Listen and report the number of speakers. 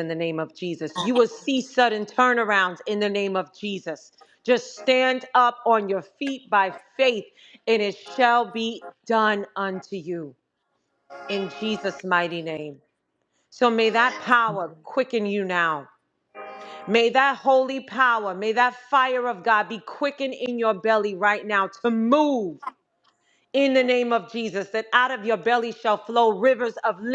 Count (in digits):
1